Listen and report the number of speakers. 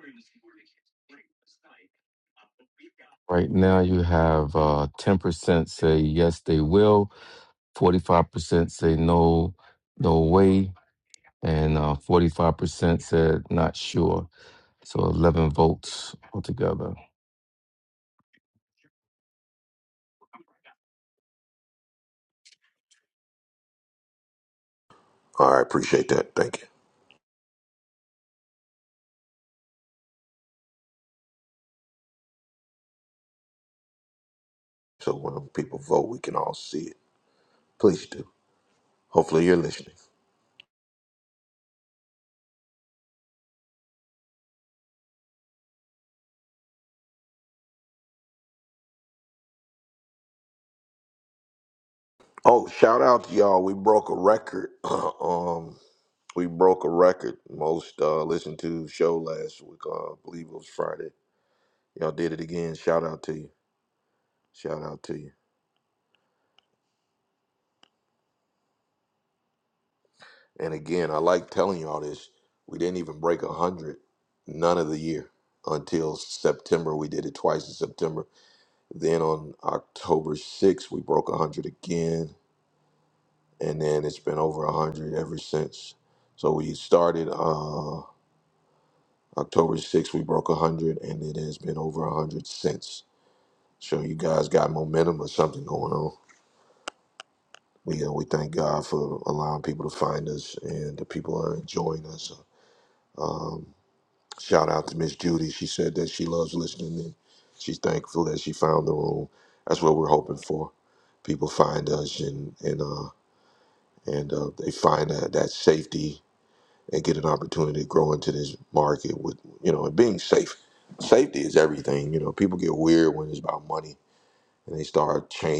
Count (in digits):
2